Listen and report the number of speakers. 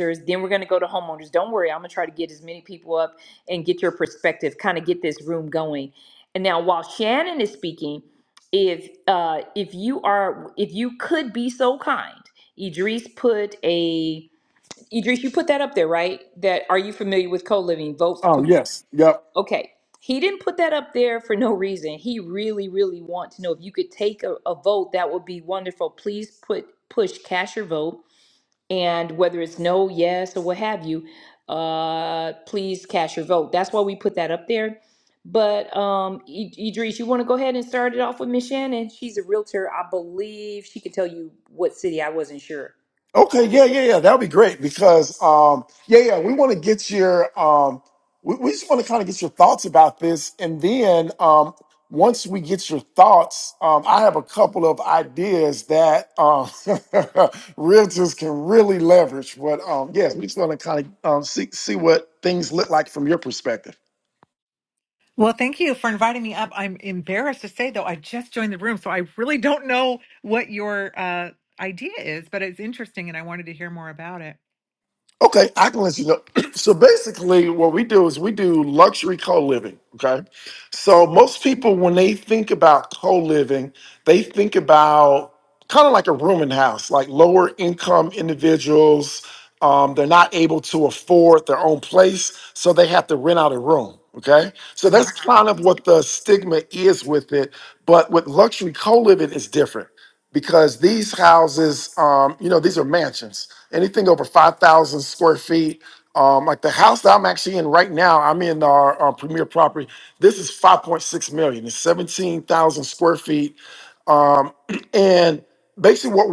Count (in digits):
3